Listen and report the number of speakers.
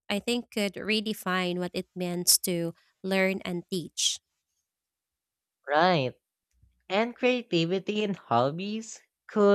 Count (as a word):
two